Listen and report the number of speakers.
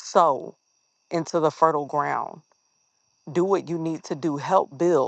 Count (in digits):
1